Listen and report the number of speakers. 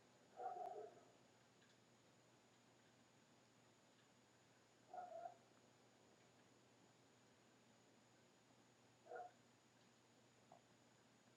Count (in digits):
0